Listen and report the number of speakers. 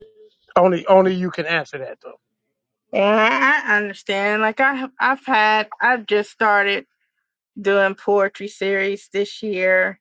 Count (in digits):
2